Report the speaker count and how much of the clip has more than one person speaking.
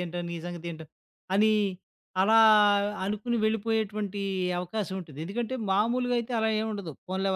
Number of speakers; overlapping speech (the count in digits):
1, no overlap